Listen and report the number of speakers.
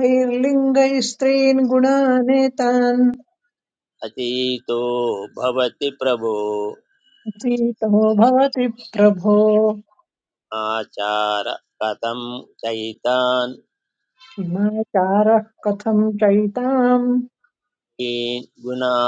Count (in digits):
2